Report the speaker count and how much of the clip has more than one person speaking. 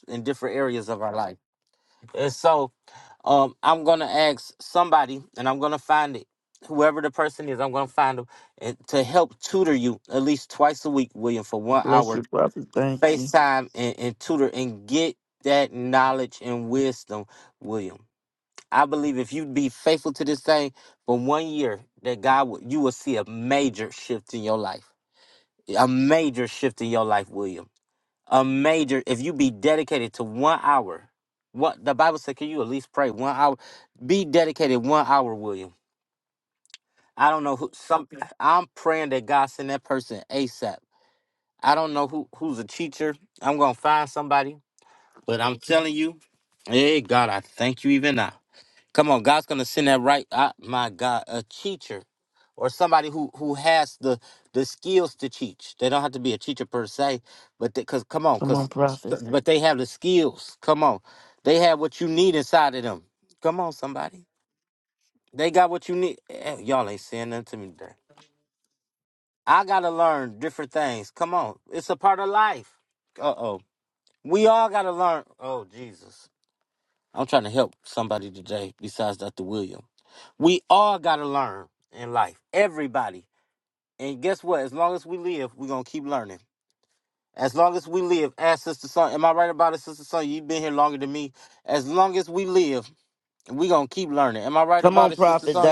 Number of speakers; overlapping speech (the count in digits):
2, about 2%